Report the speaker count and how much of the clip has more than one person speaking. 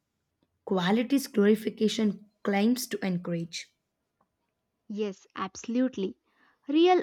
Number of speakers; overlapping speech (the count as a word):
two, no overlap